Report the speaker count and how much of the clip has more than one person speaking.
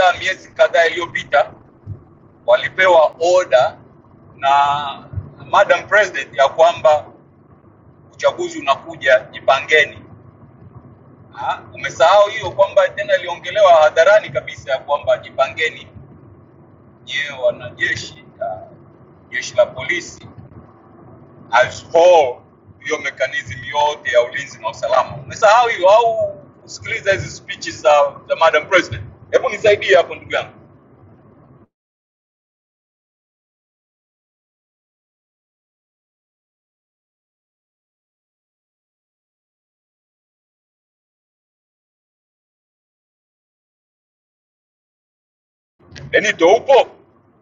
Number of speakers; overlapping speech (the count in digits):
1, no overlap